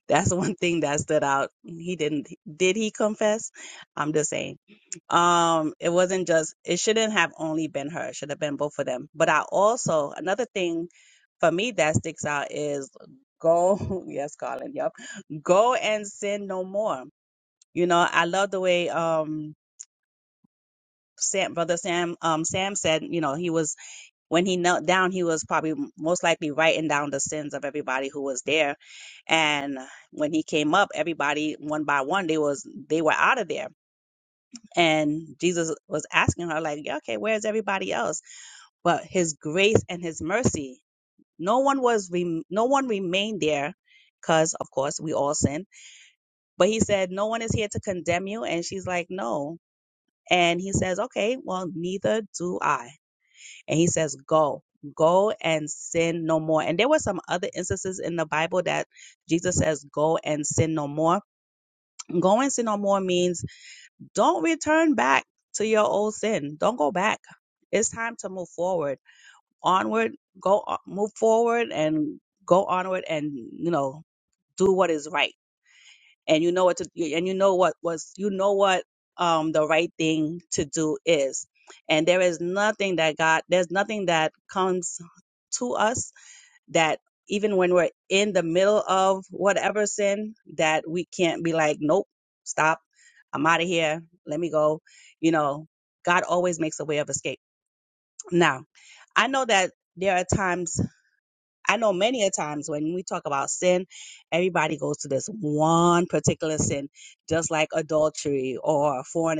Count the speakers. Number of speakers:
1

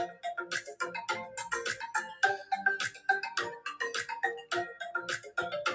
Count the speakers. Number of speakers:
0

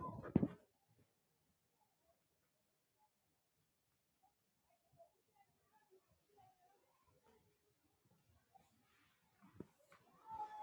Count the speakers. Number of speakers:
0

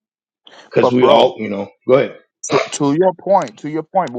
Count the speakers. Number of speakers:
2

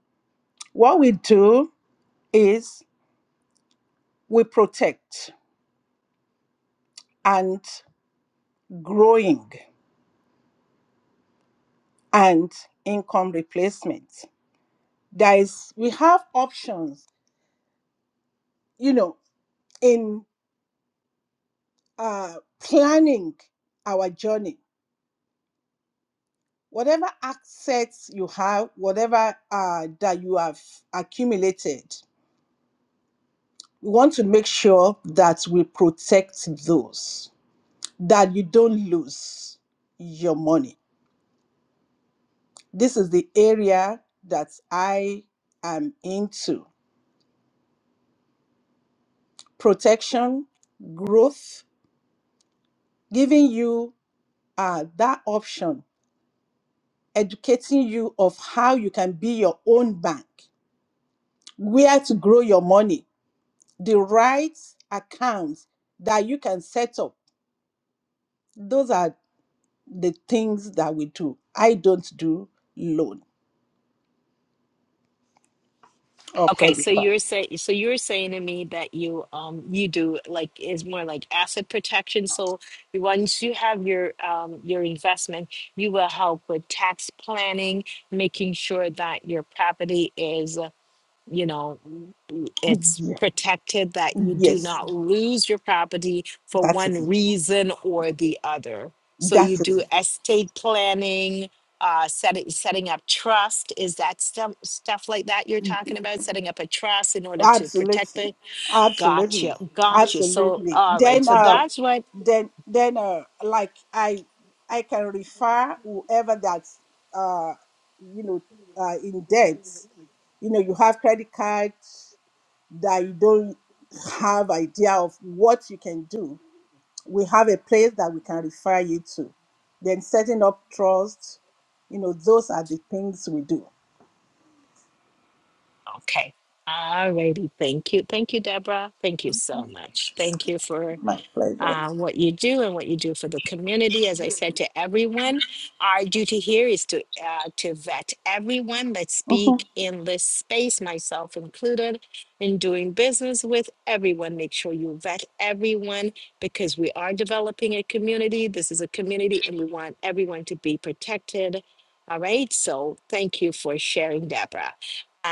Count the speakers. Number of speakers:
2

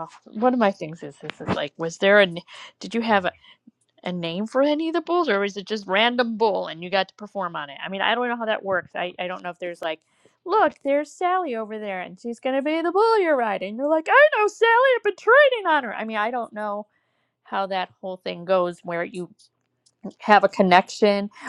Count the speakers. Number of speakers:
1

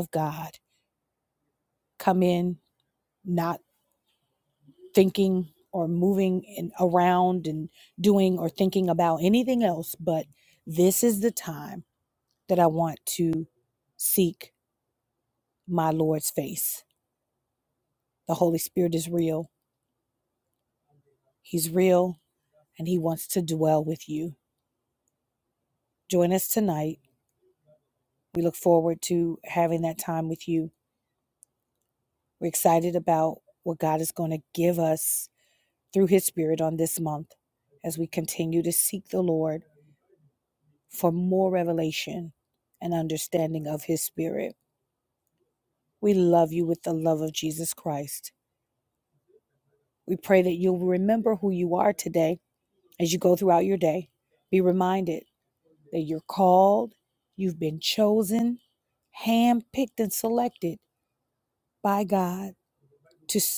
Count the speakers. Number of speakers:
1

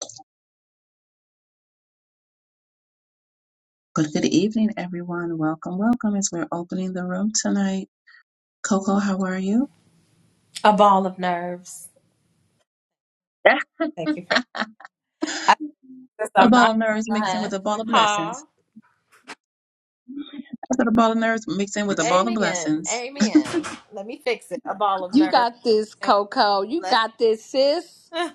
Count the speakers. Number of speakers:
3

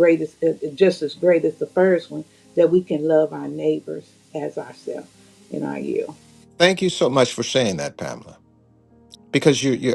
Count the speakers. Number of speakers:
2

